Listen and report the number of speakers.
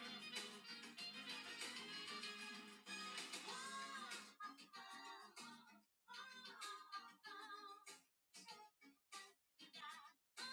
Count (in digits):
0